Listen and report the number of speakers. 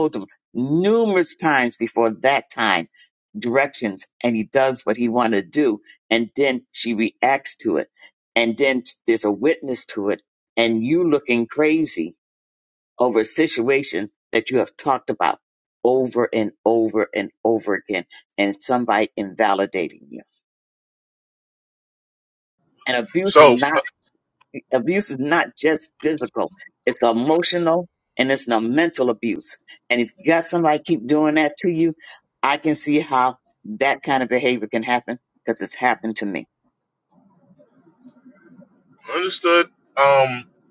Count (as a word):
two